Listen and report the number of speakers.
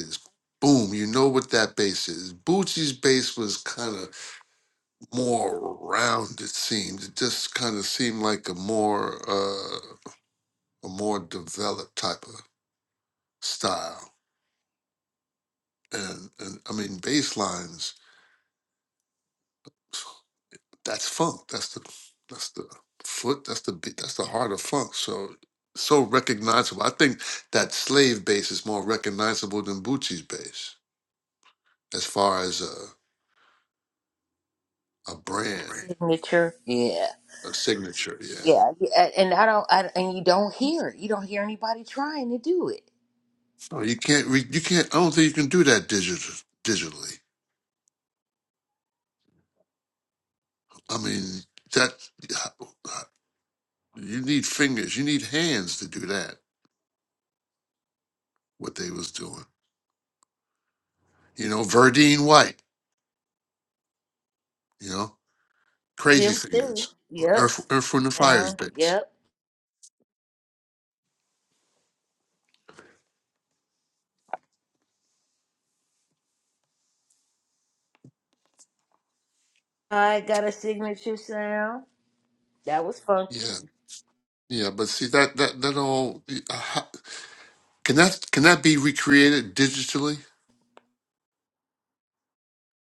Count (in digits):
2